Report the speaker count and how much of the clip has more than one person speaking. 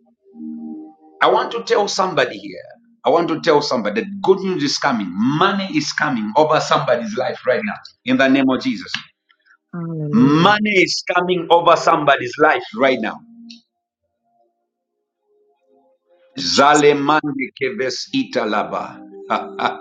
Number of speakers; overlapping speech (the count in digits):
2, about 4%